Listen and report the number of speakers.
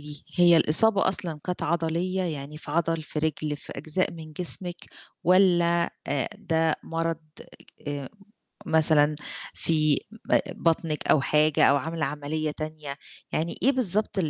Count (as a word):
one